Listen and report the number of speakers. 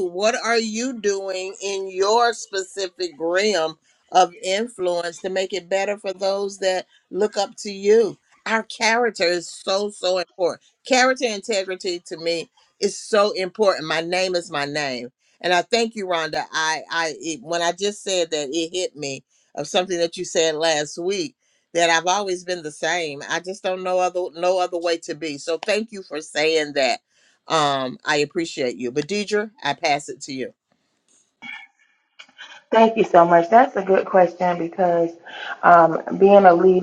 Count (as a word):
two